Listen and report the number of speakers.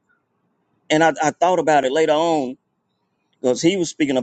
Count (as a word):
one